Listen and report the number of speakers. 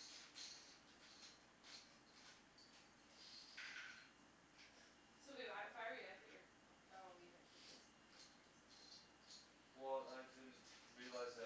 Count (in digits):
2